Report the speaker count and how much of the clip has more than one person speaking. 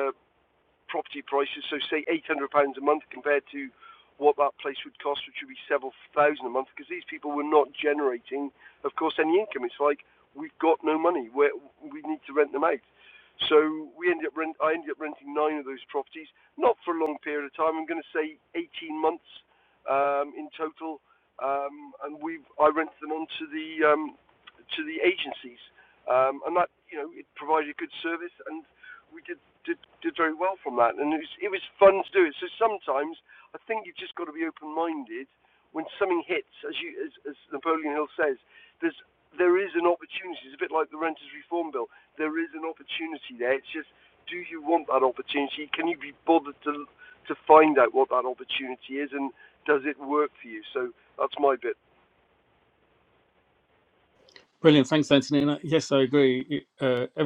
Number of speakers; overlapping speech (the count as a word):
two, no overlap